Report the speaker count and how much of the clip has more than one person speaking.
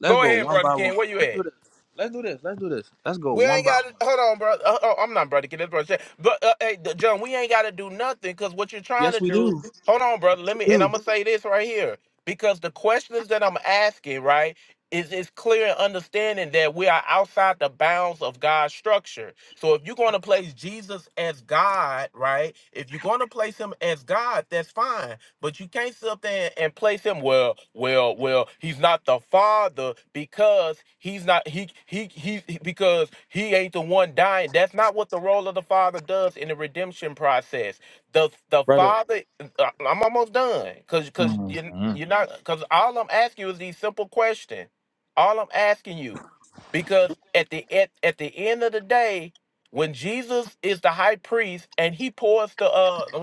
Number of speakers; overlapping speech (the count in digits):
2, about 7%